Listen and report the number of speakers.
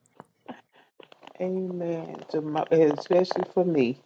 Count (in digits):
1